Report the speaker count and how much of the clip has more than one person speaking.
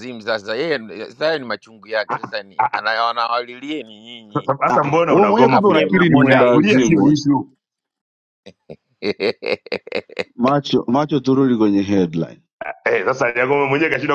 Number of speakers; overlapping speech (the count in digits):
3, about 20%